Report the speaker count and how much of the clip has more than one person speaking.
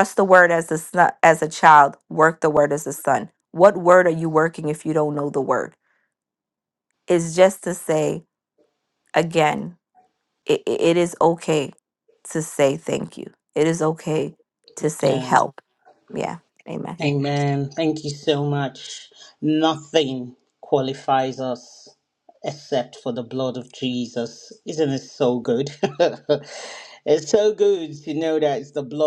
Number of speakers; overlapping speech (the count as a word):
two, about 1%